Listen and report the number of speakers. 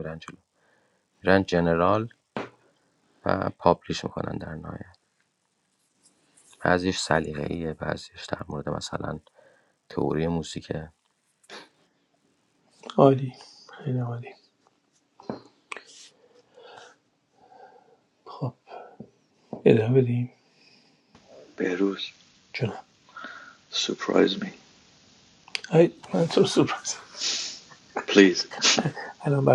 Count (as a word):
three